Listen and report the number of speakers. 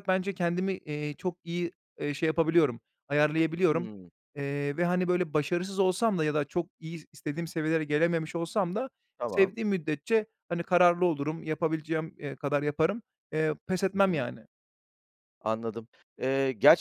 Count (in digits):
2